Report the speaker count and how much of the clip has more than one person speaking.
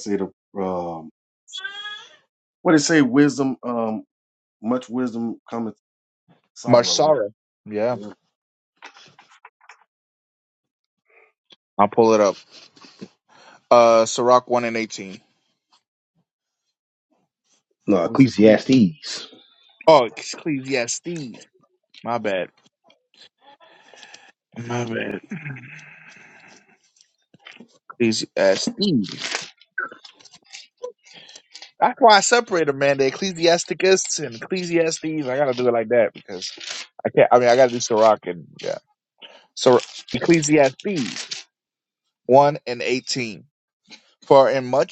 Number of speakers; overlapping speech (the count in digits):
3, about 2%